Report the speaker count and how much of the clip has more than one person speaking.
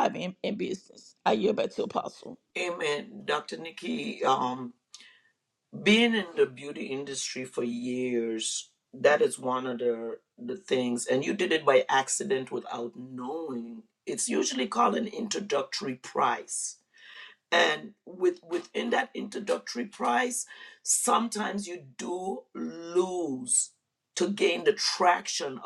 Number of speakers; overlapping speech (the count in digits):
2, no overlap